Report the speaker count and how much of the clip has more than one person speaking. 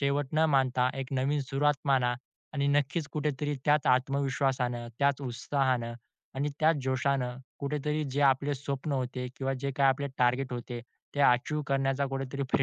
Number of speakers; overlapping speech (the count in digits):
1, no overlap